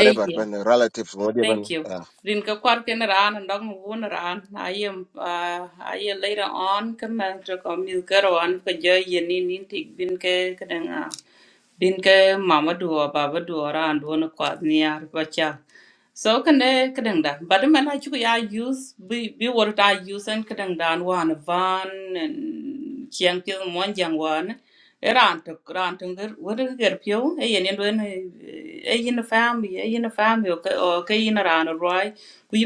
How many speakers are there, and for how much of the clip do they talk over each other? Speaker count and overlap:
two, about 3%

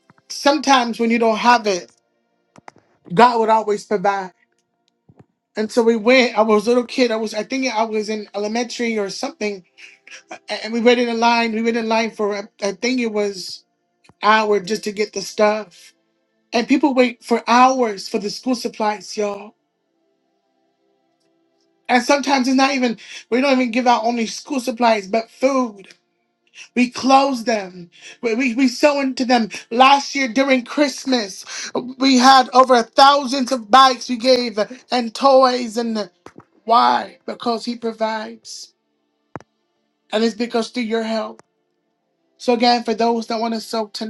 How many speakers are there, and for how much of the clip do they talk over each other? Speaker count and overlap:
one, no overlap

